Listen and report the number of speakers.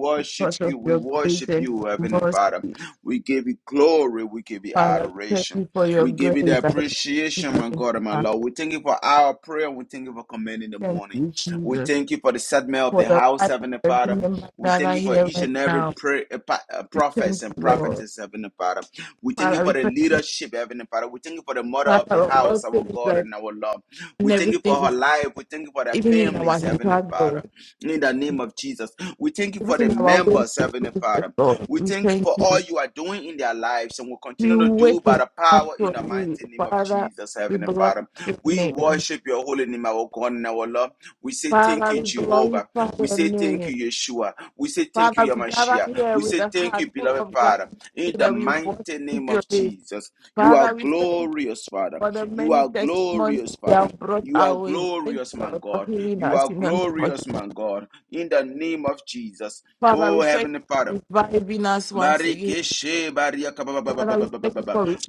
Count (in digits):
2